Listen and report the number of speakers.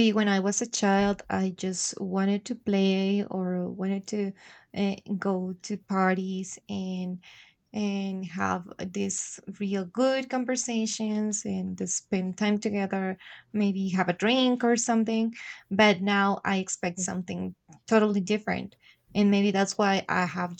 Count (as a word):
one